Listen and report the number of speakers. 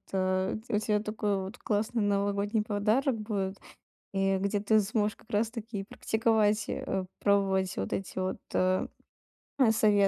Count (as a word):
one